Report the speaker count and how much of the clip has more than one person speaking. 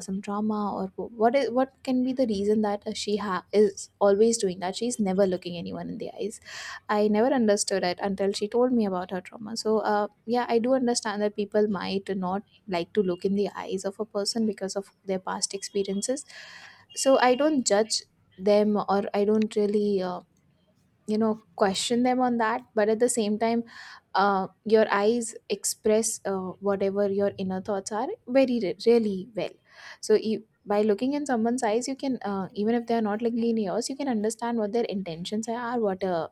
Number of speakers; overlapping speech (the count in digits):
1, no overlap